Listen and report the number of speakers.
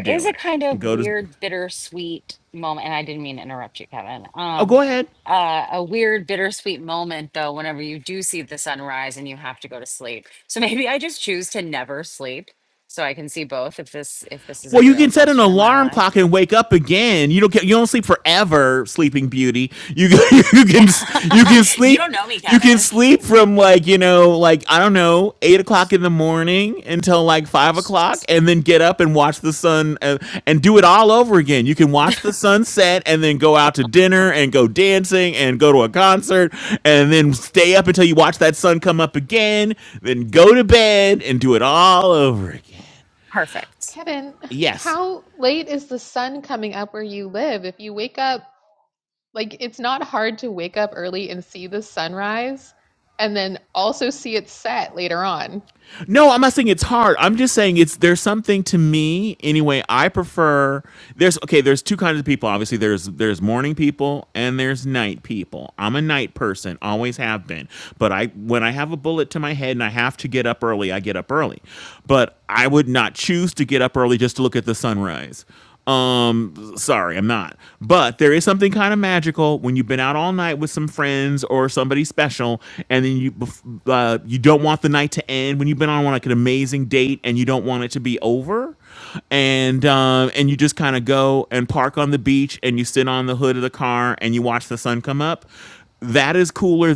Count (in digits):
3